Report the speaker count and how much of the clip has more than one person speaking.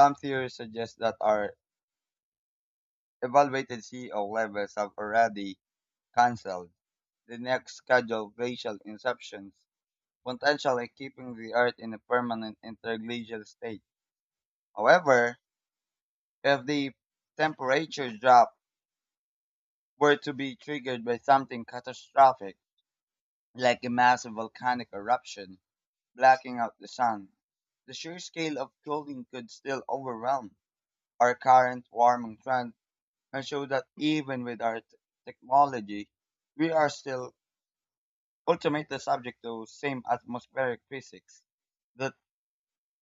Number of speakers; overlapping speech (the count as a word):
one, no overlap